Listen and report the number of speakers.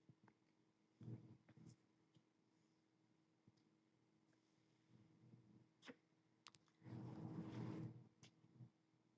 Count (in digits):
0